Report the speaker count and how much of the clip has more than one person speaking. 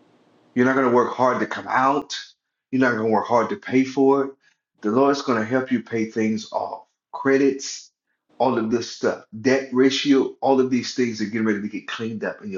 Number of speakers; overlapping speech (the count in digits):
1, no overlap